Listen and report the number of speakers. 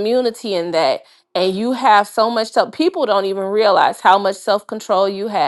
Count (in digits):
1